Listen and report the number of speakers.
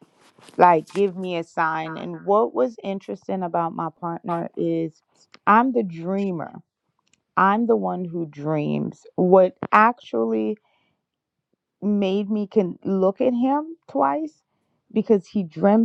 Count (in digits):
1